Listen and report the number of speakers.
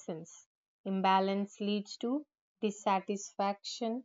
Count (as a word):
one